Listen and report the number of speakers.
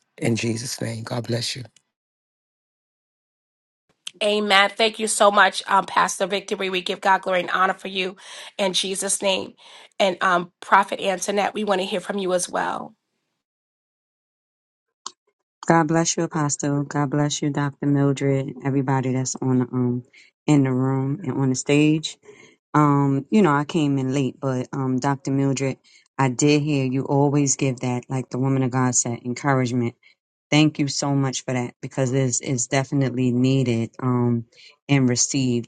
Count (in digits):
3